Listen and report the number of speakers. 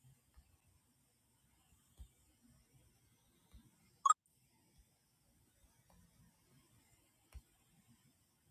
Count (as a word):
zero